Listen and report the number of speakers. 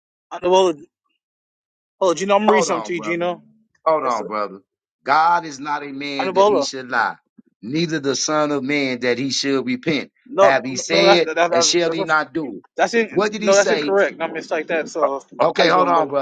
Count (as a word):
two